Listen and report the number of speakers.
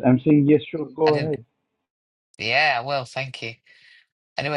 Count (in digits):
2